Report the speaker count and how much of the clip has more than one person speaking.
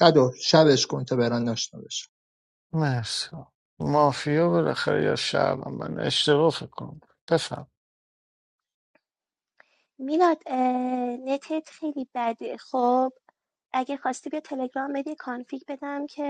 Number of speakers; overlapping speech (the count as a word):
three, no overlap